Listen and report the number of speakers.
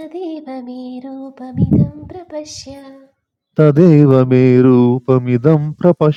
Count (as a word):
two